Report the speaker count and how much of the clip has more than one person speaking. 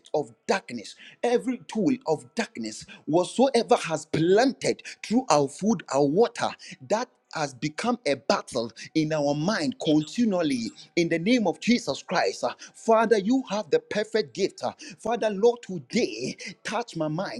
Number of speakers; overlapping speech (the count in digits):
1, no overlap